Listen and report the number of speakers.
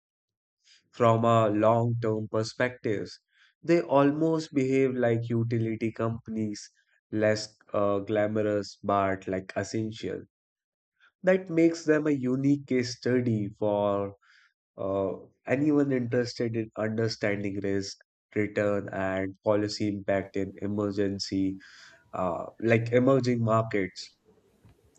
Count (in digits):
1